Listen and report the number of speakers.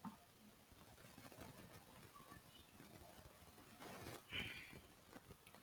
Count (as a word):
zero